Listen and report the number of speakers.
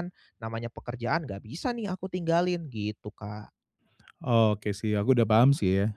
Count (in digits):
2